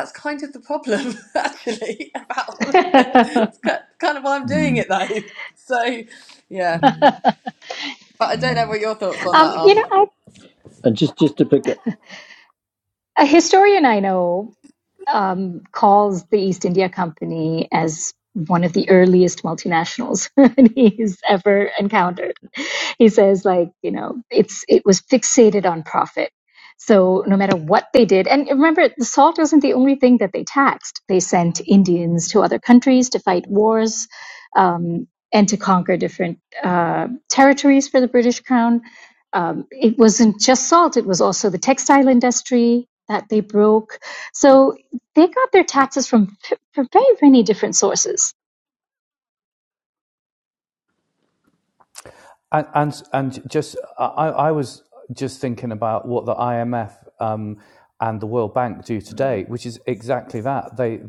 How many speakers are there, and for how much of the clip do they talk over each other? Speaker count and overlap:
four, about 2%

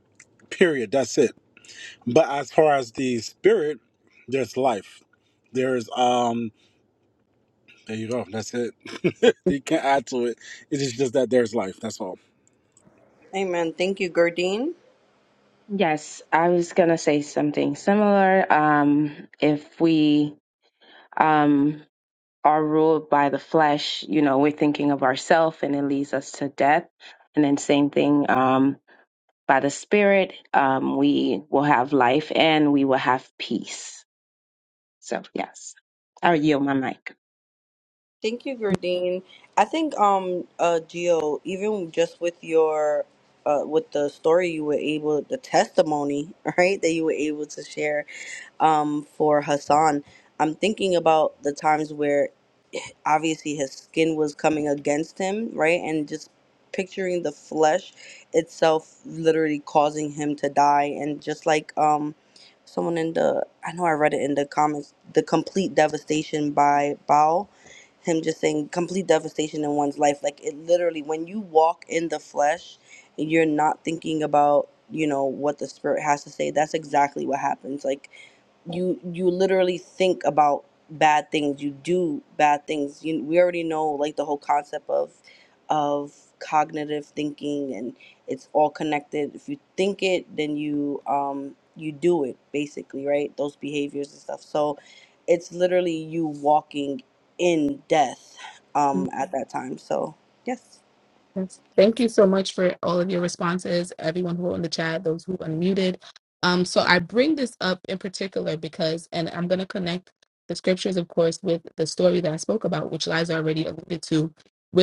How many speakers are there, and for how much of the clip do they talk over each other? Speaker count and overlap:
four, under 1%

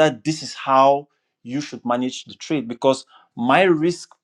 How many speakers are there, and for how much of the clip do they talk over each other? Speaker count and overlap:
one, no overlap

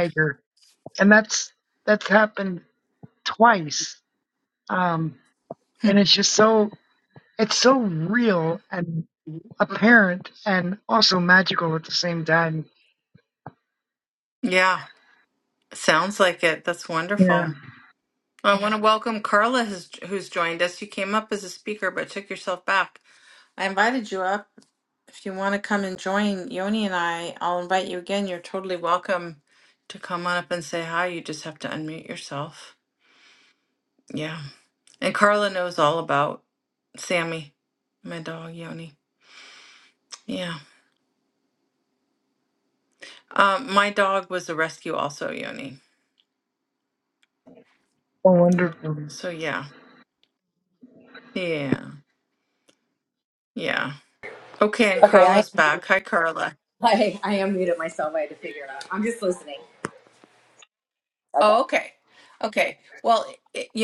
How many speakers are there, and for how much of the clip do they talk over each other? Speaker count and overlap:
three, about 2%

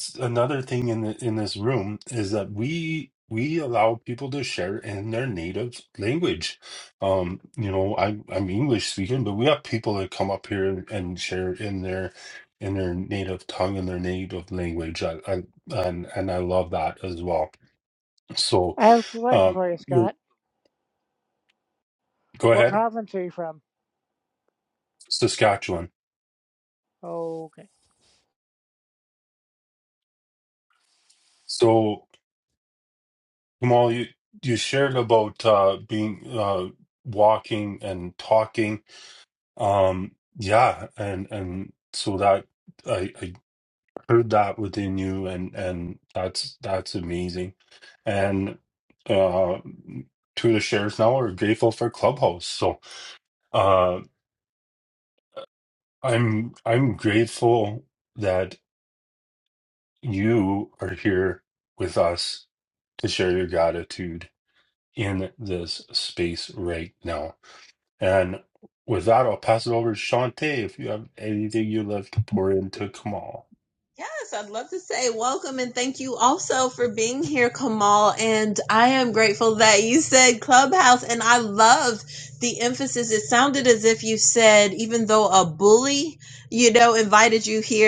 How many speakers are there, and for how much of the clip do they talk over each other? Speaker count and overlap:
three, about 1%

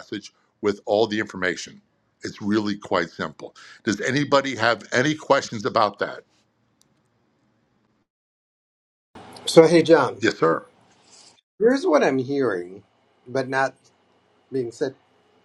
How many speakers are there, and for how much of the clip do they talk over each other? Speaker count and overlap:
two, no overlap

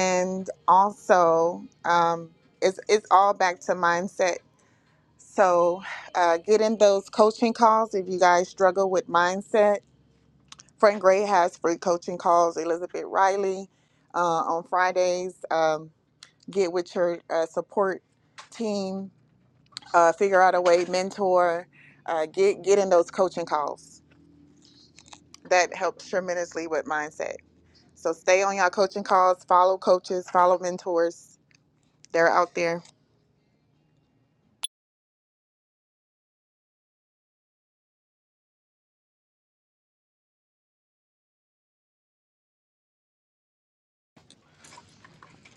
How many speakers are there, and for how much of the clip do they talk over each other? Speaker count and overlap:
one, no overlap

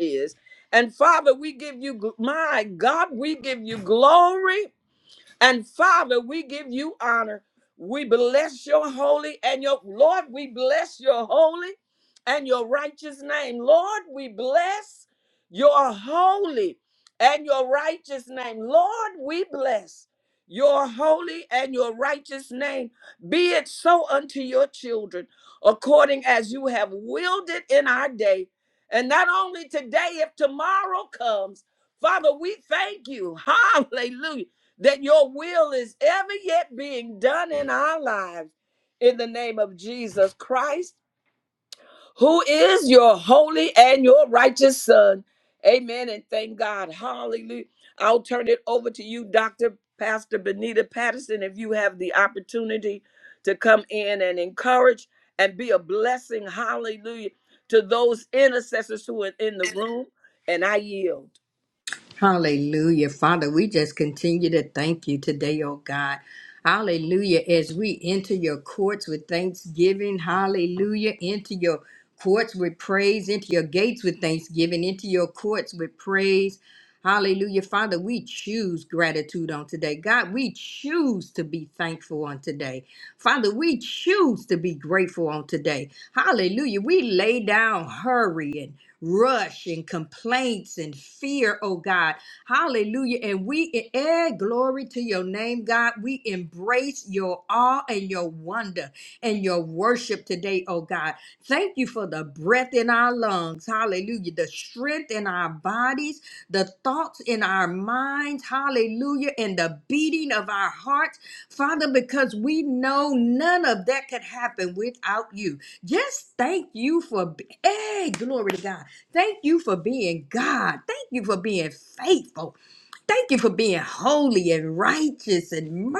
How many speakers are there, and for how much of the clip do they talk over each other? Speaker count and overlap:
two, no overlap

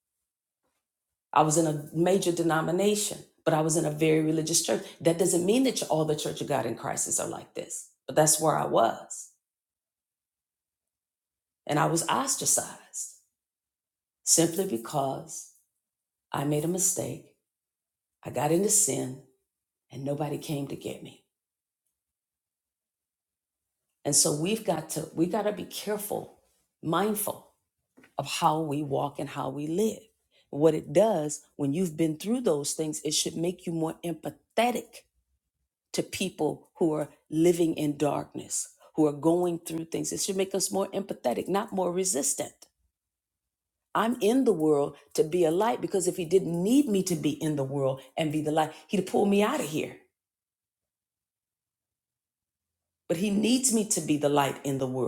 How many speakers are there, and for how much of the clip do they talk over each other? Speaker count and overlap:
one, no overlap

